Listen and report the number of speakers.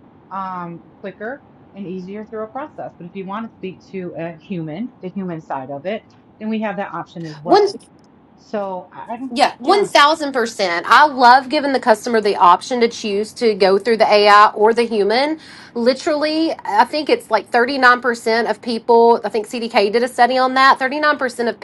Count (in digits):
2